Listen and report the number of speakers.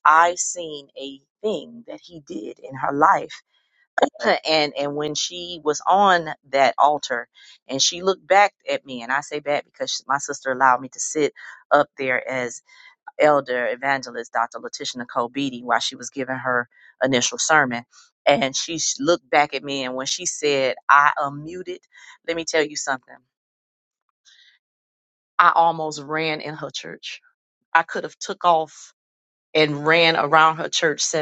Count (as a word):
one